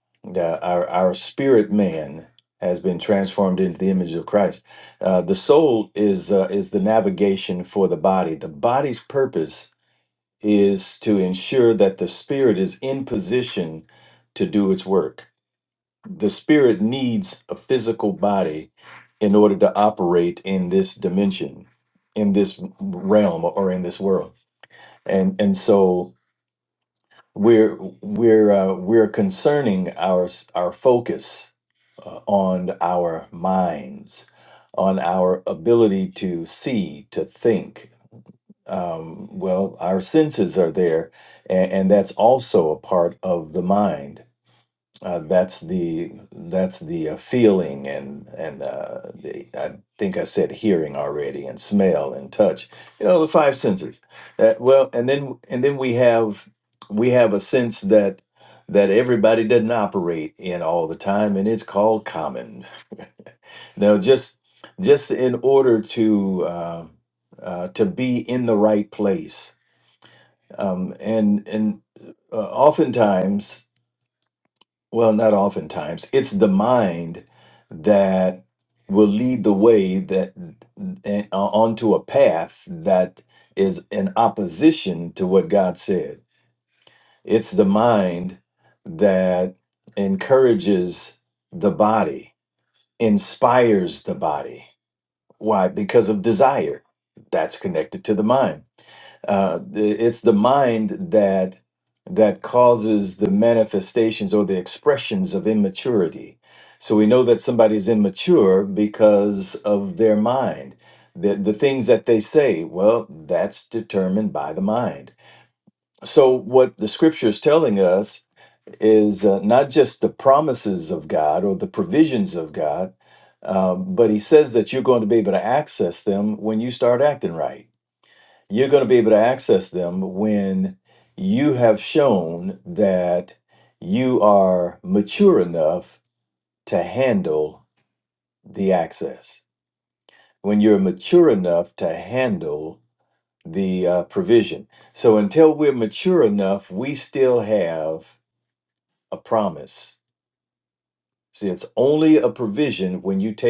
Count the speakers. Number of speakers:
1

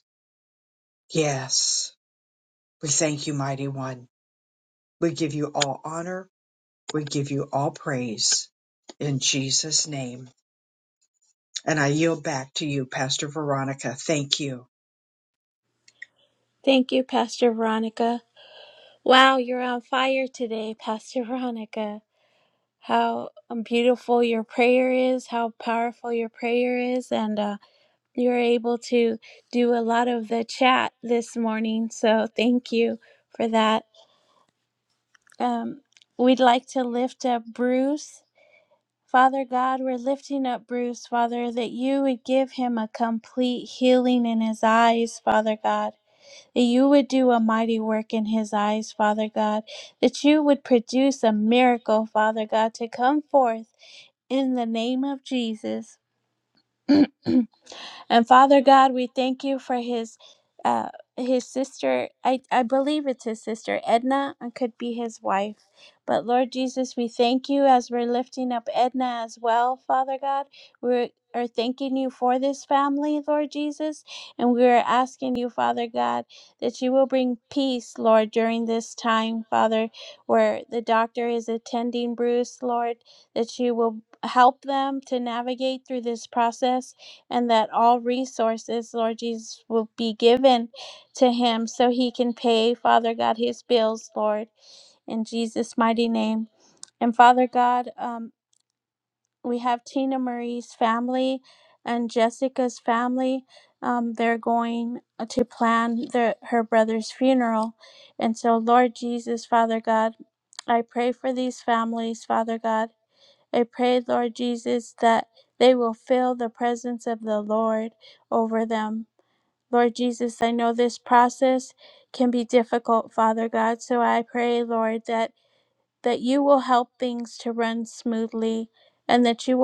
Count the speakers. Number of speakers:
2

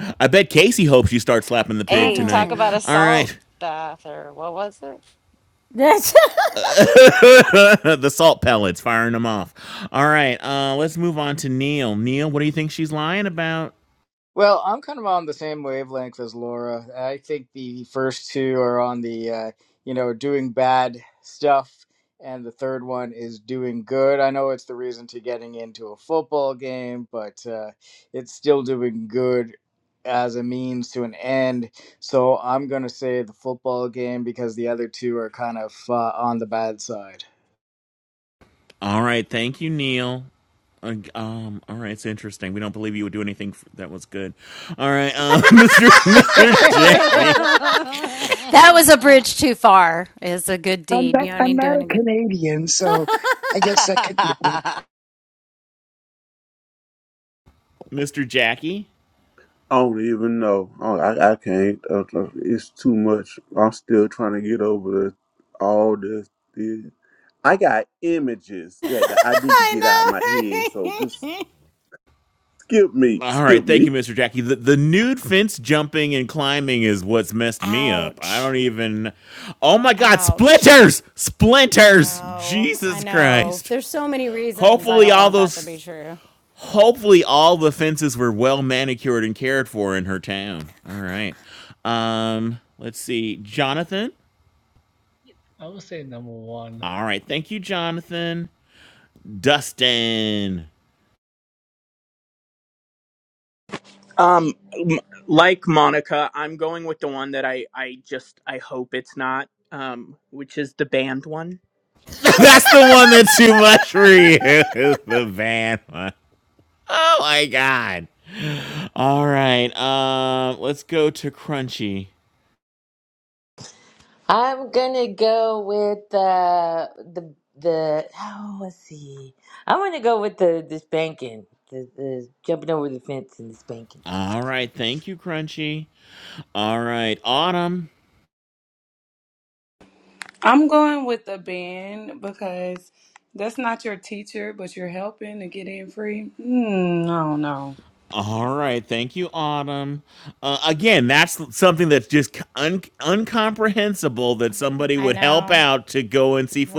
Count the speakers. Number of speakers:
10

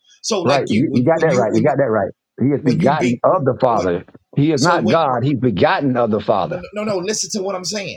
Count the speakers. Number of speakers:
2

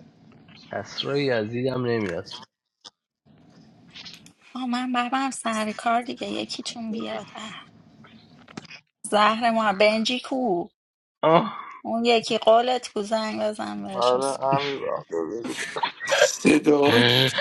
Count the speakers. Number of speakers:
4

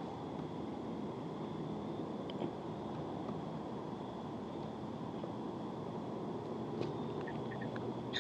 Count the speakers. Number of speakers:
0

